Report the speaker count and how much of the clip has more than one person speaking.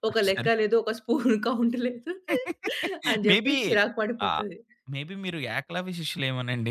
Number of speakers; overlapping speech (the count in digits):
2, about 15%